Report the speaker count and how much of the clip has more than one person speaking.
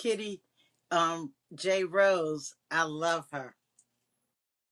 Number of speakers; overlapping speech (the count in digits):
1, no overlap